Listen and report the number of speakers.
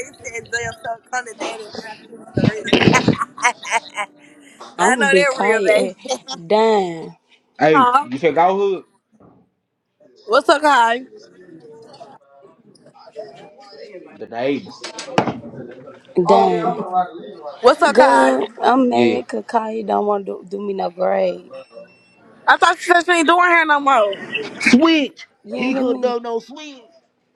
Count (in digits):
3